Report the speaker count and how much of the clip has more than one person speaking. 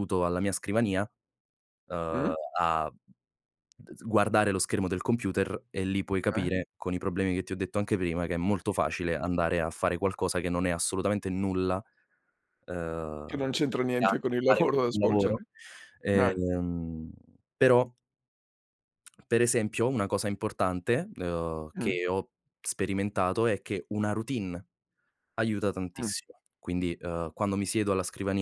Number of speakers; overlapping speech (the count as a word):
two, about 8%